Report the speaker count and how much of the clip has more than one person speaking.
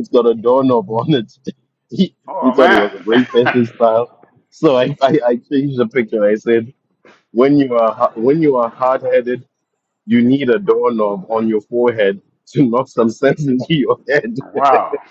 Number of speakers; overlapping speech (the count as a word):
two, about 4%